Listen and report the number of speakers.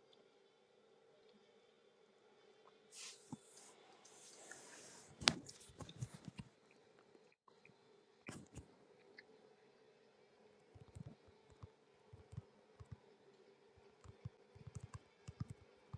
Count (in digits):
0